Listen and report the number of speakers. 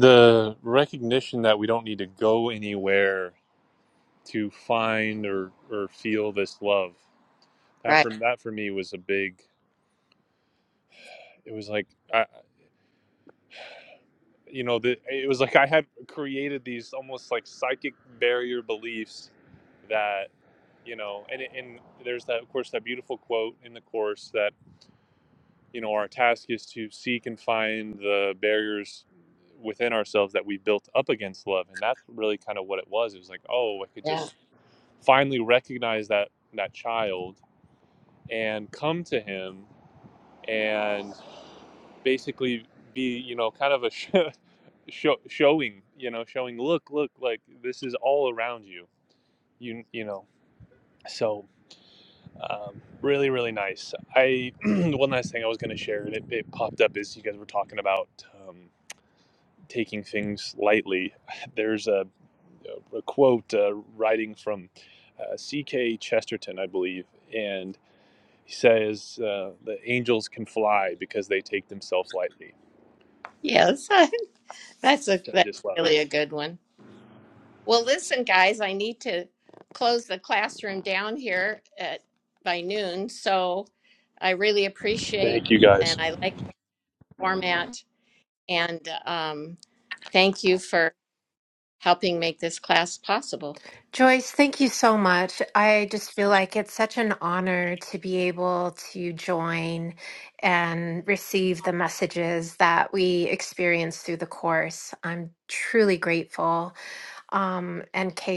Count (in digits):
3